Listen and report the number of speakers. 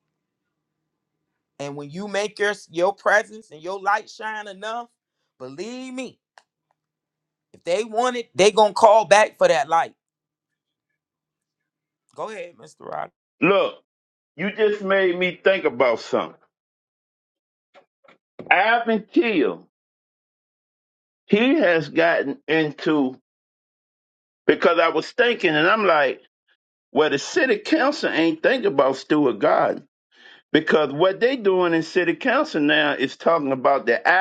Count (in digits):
2